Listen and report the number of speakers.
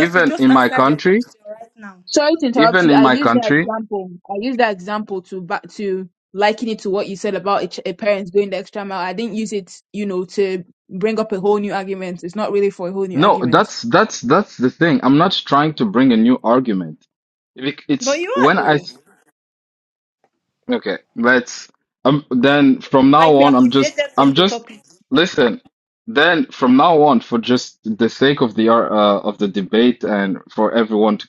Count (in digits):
3